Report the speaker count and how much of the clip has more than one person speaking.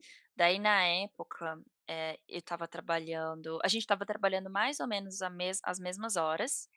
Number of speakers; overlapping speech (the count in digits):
1, no overlap